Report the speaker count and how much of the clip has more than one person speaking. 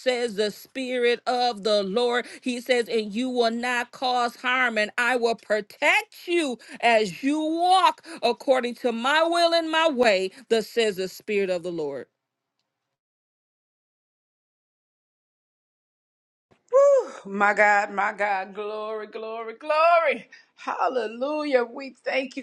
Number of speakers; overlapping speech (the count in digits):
2, no overlap